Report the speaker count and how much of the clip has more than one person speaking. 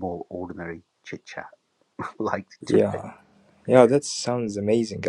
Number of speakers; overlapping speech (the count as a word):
two, about 8%